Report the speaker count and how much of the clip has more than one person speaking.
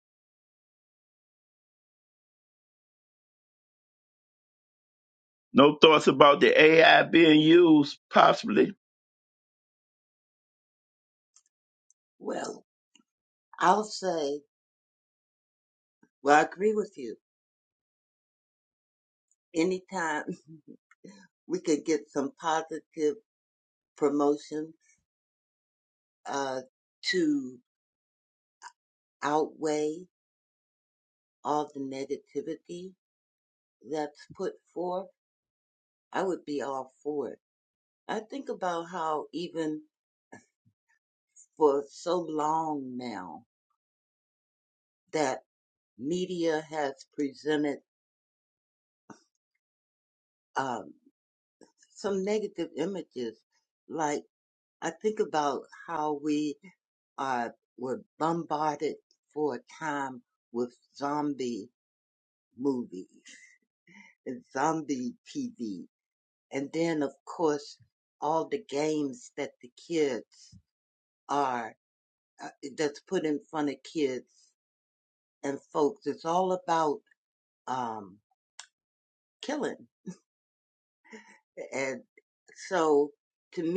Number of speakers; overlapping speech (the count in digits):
2, no overlap